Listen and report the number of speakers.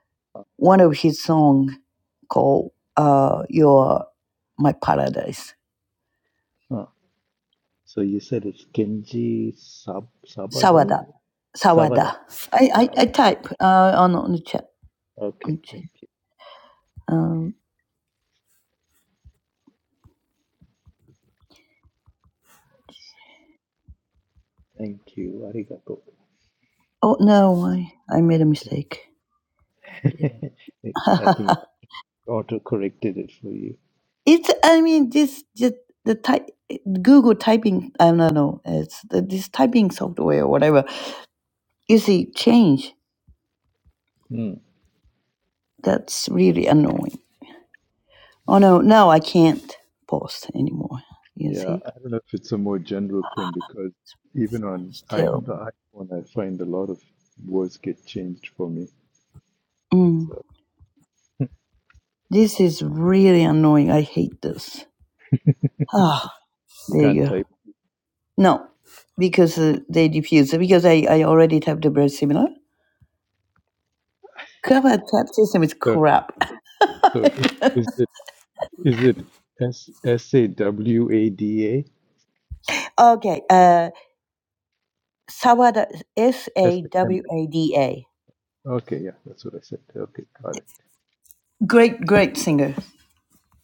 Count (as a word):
two